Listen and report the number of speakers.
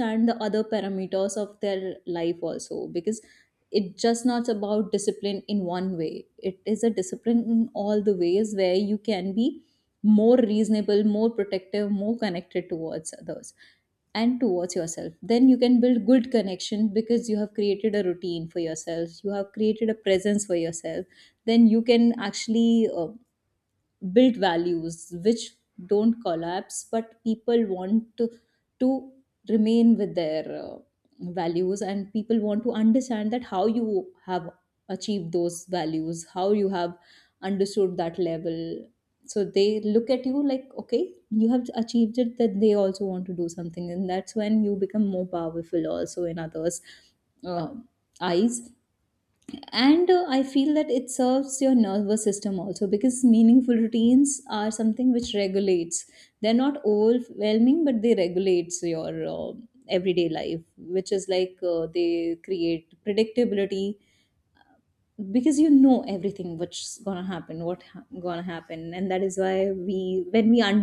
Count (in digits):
1